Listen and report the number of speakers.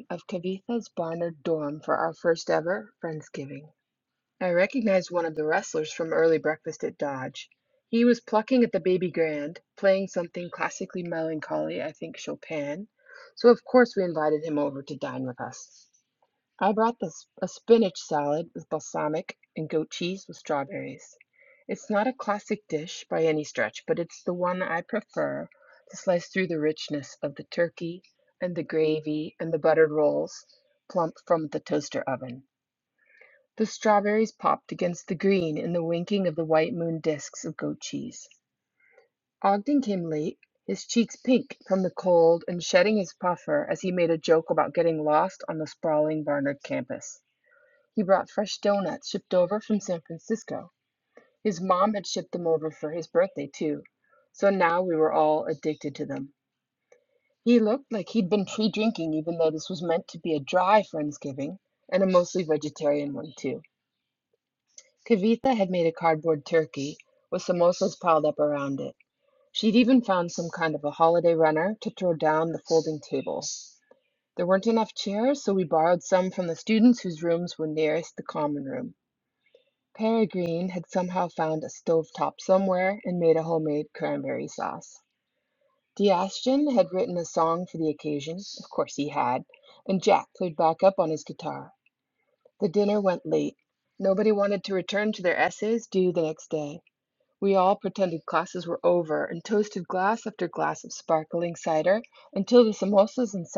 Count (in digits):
1